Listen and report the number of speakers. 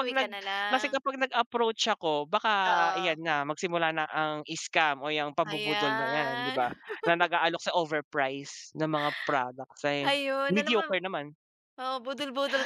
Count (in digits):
2